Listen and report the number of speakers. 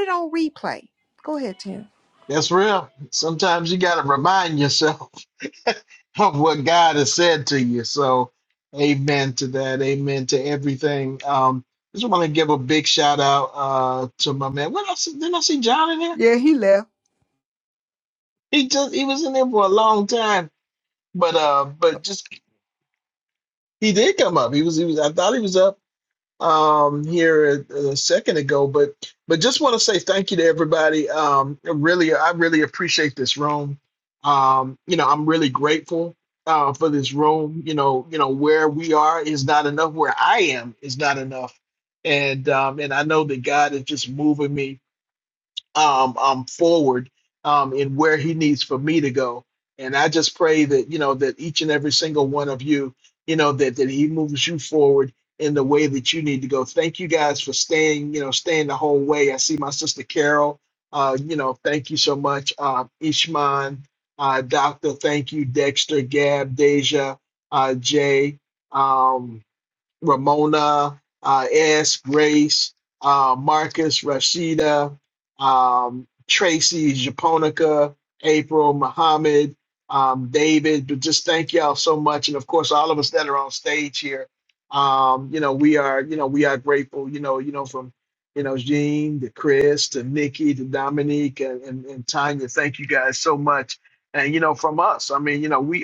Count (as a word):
two